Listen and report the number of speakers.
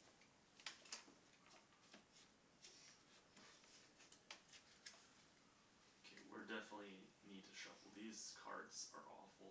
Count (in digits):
1